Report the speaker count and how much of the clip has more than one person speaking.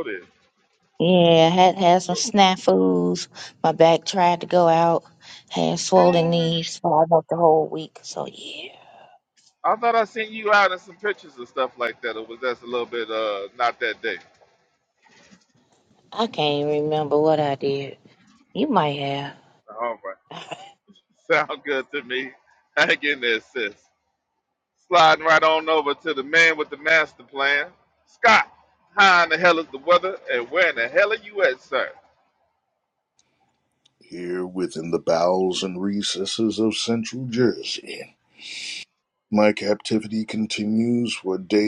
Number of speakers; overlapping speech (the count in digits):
3, about 1%